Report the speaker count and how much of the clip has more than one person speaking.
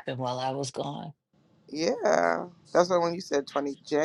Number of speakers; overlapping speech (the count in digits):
2, no overlap